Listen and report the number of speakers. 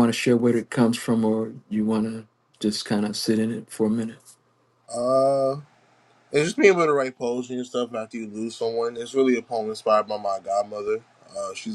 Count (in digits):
2